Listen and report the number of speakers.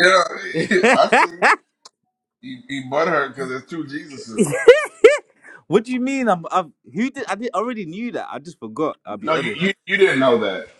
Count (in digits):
2